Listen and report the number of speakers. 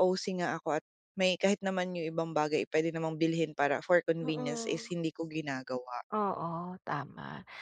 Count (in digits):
2